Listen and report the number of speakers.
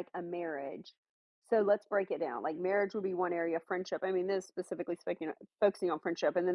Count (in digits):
1